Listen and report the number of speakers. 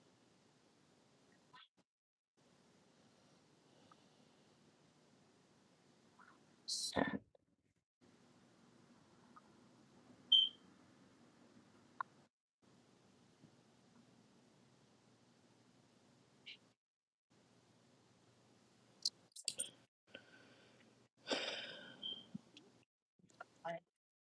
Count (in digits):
0